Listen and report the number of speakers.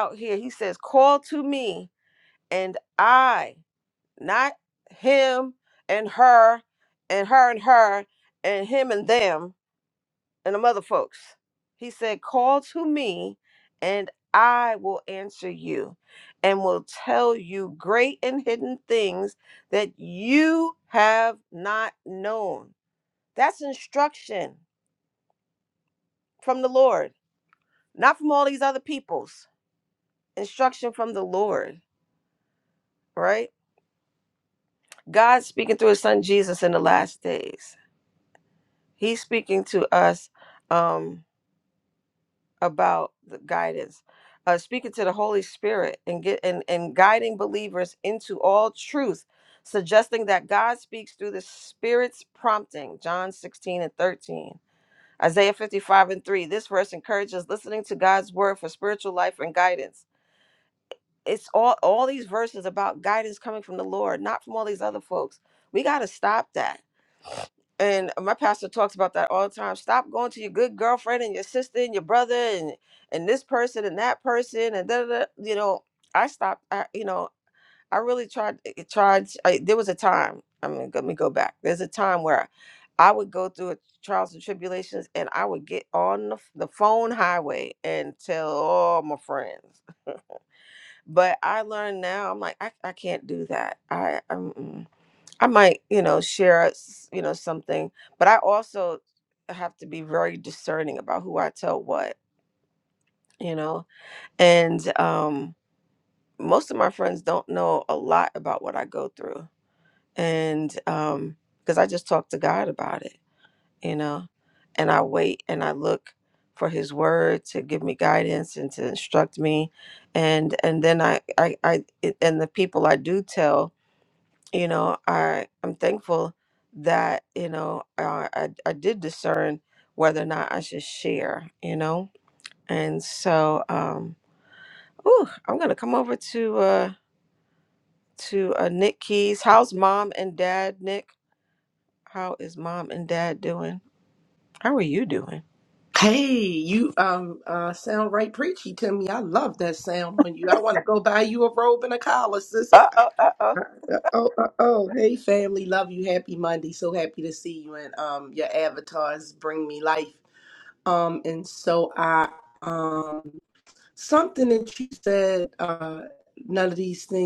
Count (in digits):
2